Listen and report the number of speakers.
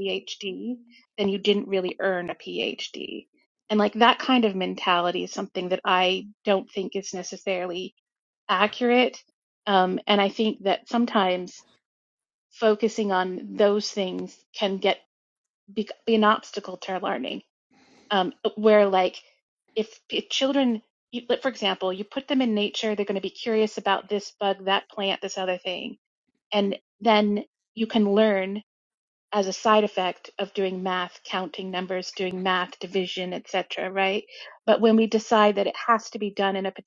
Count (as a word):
one